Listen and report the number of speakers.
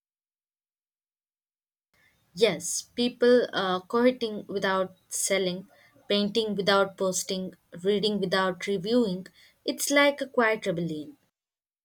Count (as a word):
one